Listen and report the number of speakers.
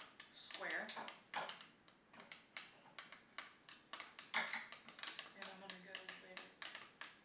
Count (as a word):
one